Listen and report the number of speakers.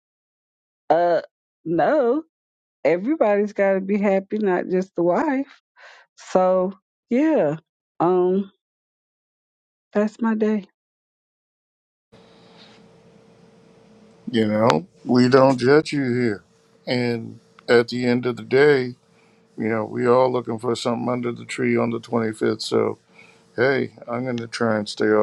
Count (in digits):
2